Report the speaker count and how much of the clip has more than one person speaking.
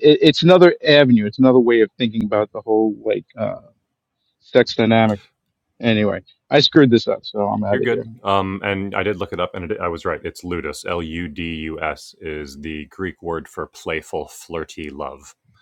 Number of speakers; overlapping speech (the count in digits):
2, about 2%